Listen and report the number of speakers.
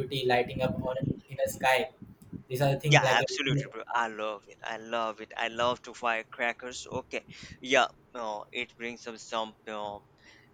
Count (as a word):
two